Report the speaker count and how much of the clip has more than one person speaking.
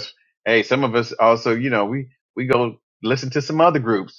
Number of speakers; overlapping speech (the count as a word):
one, no overlap